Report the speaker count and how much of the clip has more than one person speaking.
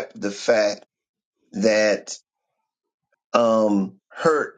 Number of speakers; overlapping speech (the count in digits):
1, no overlap